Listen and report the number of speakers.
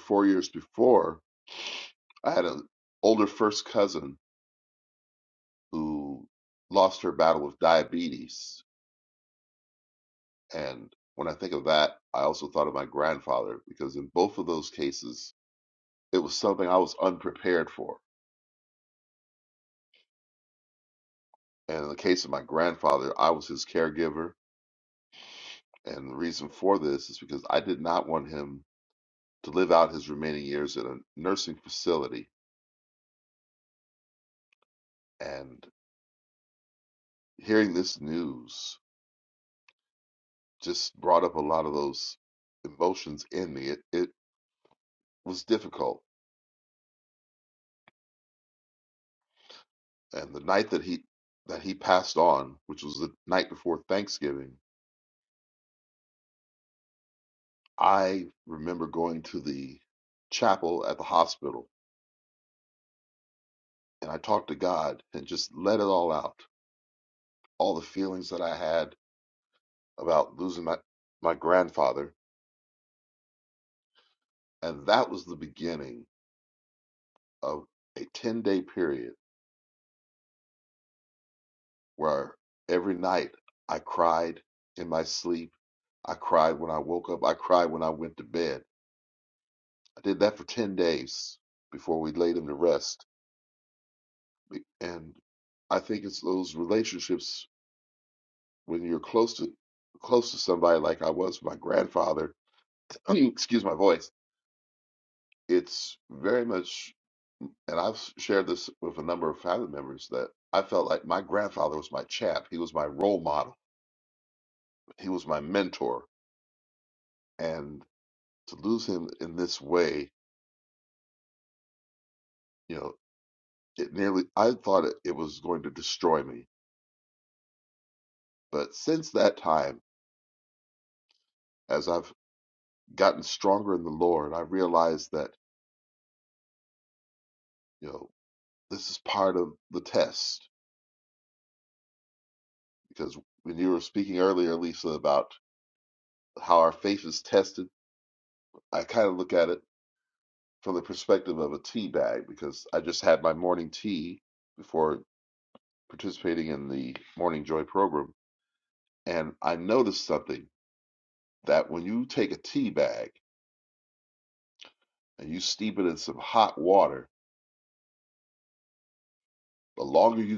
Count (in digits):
1